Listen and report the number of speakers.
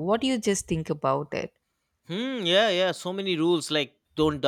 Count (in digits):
2